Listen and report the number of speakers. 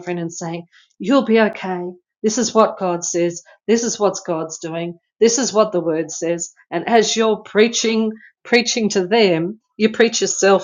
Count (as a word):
one